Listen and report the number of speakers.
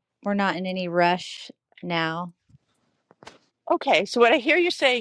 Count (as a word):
two